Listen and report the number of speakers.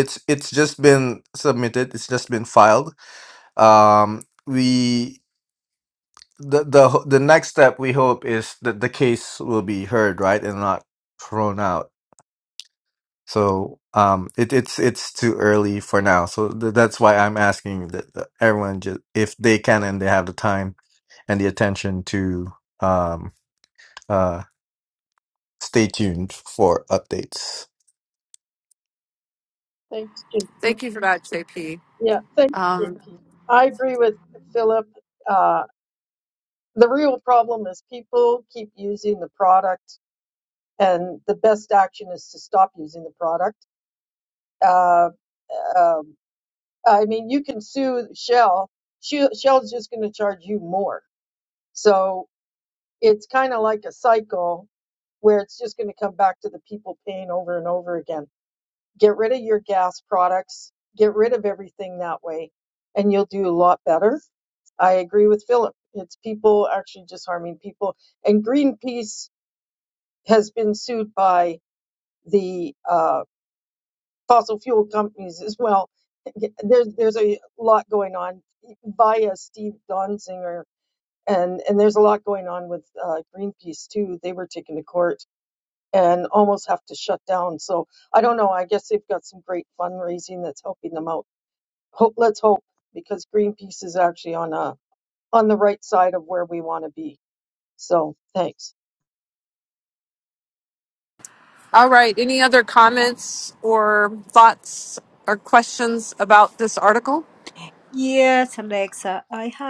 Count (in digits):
4